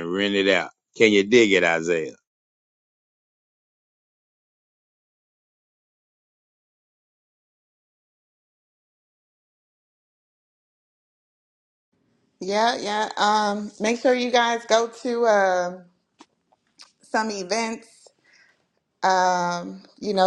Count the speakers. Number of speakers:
two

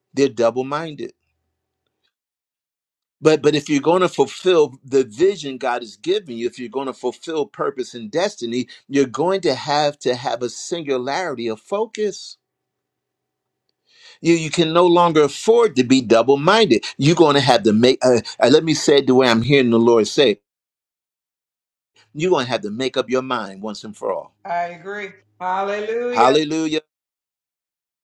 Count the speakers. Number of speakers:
two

